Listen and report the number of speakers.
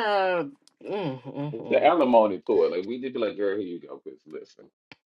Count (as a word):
two